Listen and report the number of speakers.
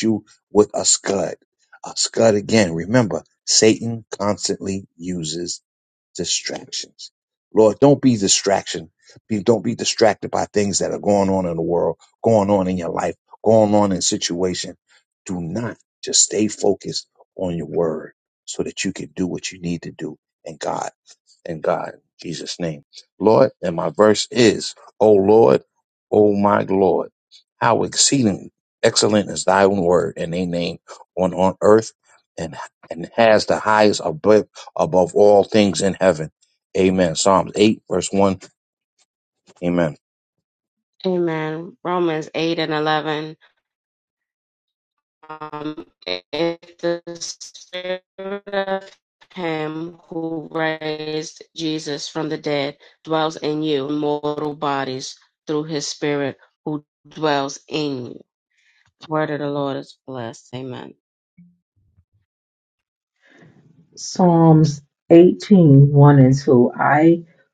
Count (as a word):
three